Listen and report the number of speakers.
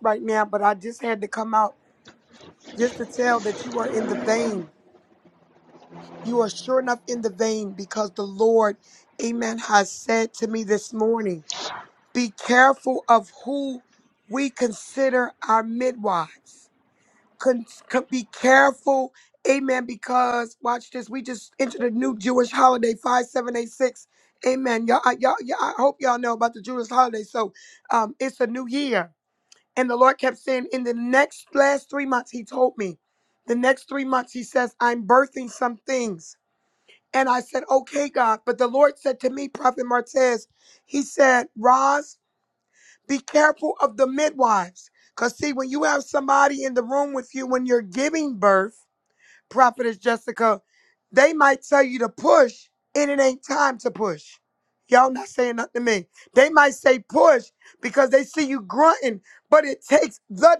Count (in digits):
1